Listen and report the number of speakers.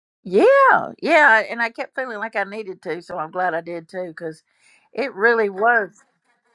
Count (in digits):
1